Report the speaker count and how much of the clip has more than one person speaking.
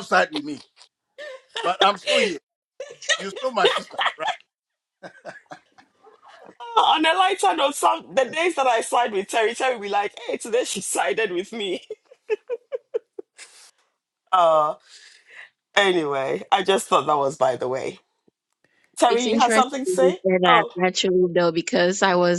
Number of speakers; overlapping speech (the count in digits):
3, about 7%